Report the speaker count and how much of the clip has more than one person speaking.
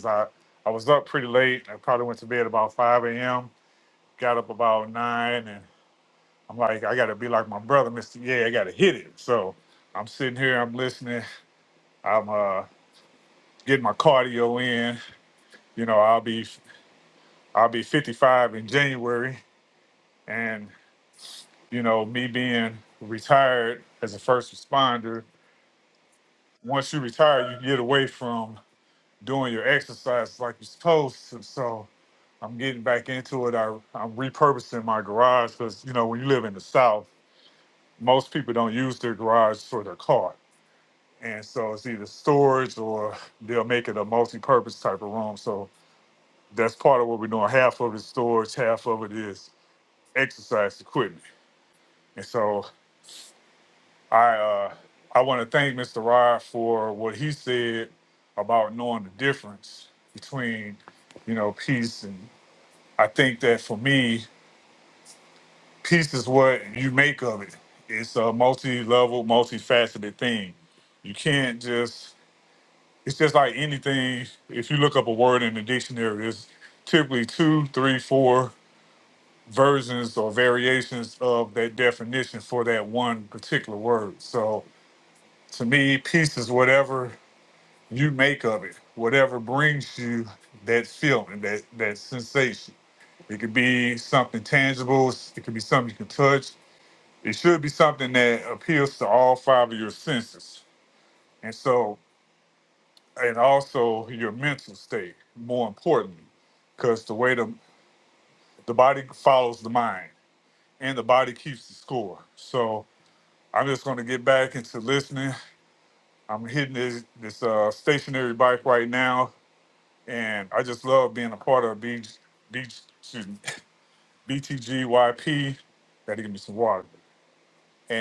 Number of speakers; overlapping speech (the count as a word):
one, no overlap